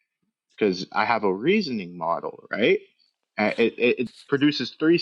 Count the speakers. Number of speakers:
1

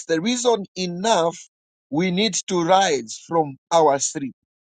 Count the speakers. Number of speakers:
1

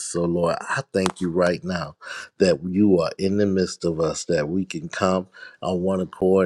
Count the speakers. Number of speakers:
1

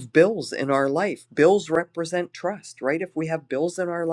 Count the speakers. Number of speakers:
1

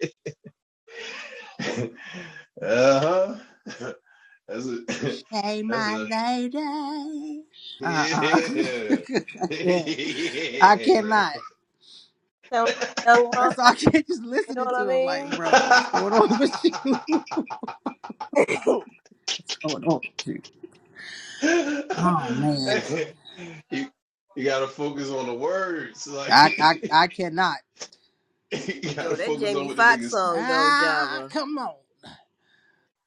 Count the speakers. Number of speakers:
3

